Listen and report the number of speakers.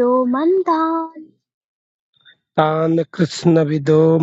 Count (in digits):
2